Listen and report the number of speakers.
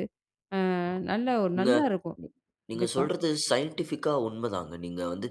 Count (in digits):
2